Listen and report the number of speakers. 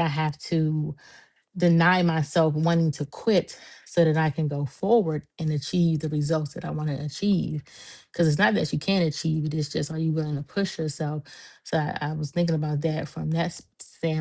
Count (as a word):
one